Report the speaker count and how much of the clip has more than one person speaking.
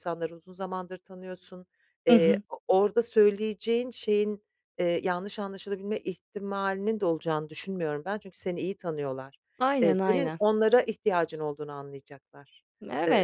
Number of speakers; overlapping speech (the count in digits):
2, about 8%